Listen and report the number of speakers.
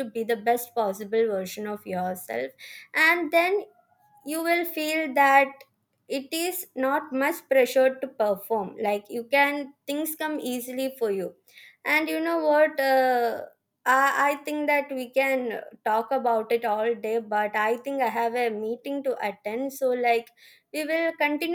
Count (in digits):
1